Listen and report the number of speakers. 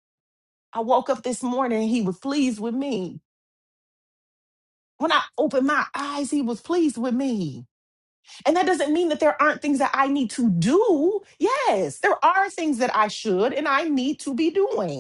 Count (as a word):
one